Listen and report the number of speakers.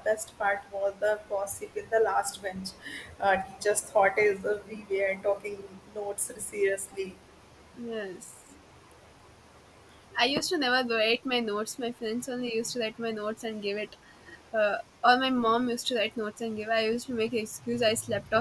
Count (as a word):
two